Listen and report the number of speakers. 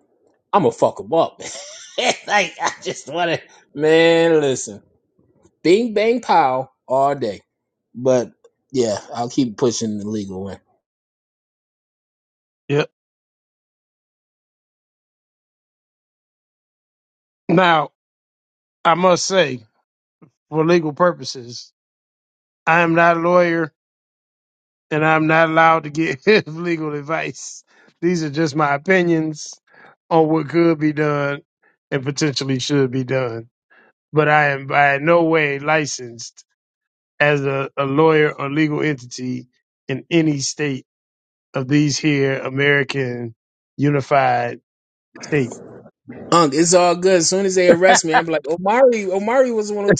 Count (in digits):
2